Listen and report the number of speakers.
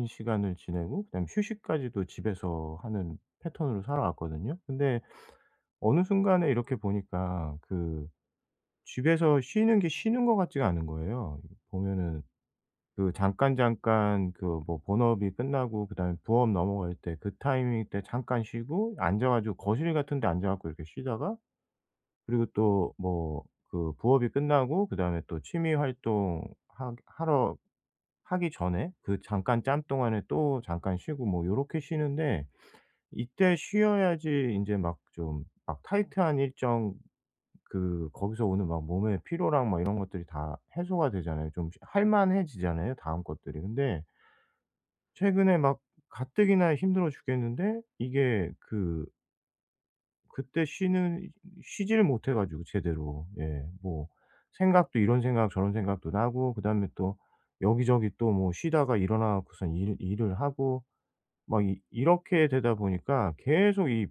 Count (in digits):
1